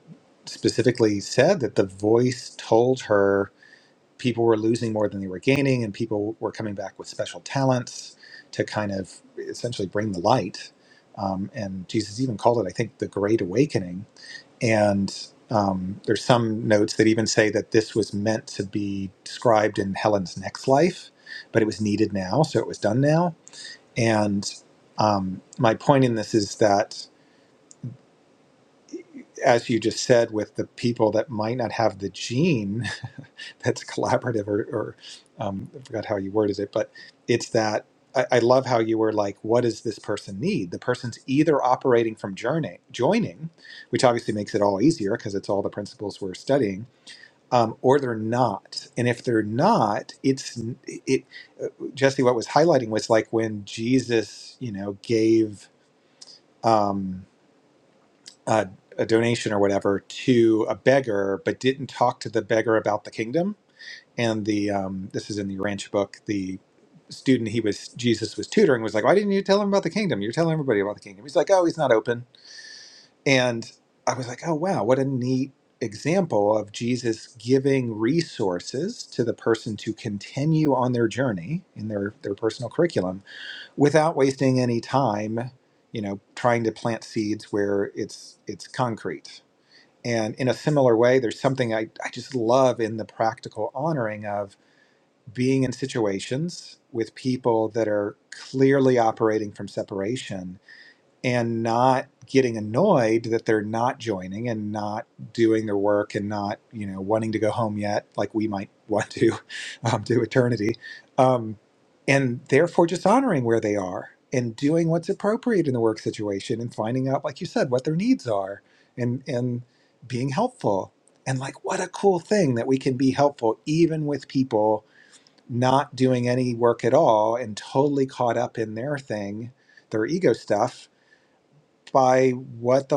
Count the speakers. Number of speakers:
one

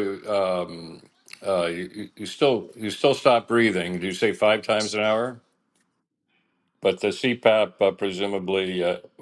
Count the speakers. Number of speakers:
one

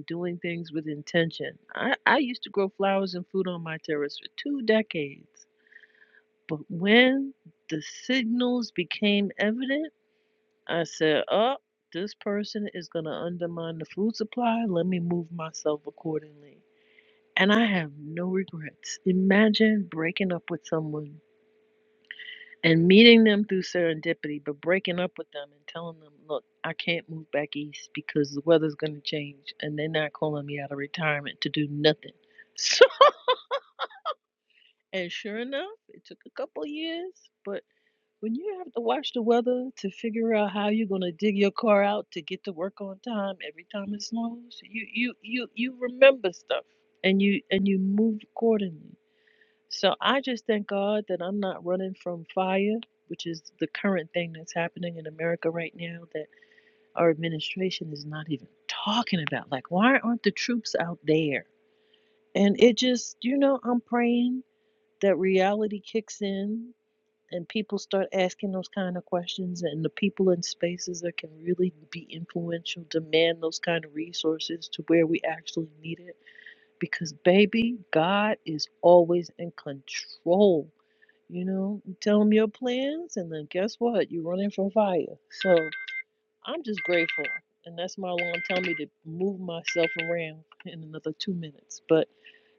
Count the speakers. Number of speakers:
one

